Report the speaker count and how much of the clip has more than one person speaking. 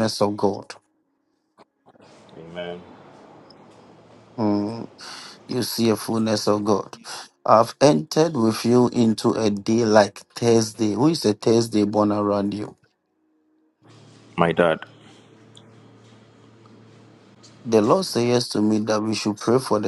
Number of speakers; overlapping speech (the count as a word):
two, no overlap